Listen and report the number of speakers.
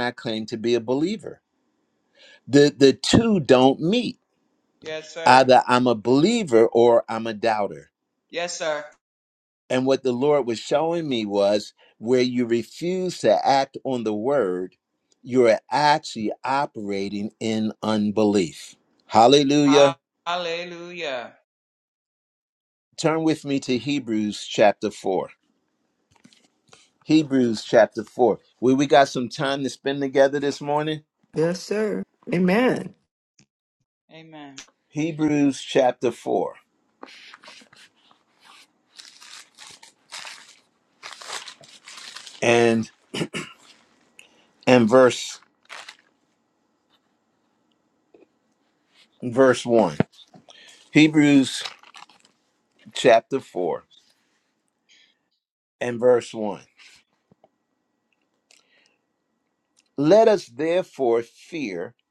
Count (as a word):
three